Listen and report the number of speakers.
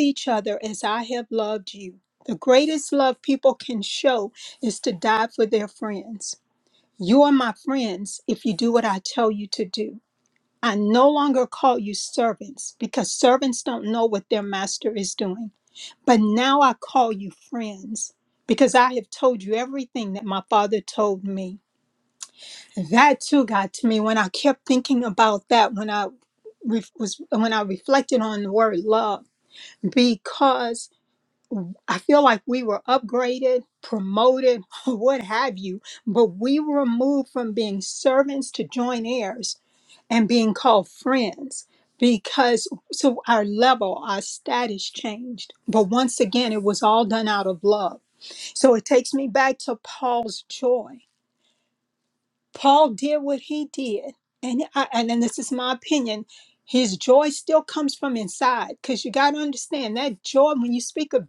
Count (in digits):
1